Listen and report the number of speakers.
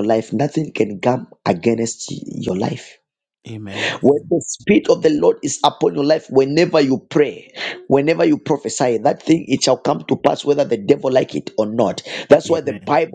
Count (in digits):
2